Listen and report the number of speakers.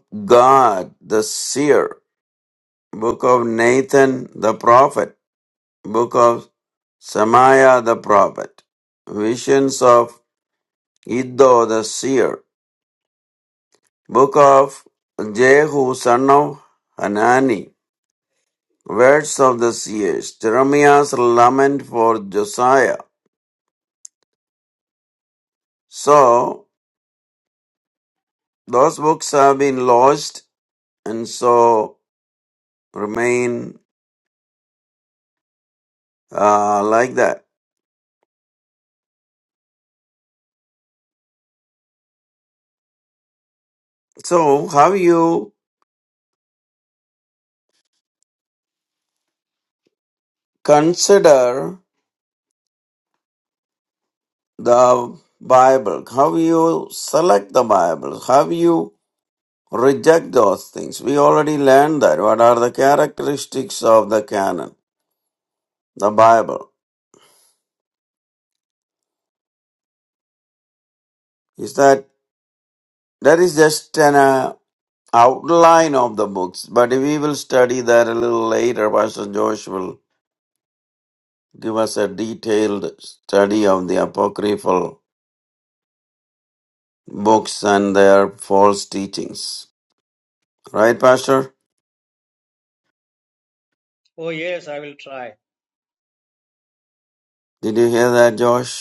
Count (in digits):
2